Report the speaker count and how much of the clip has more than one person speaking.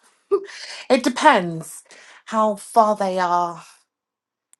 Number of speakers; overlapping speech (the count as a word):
one, no overlap